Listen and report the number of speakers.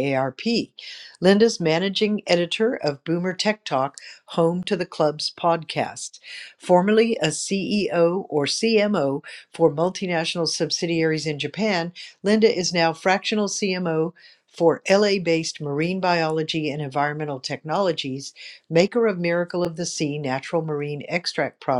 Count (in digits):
1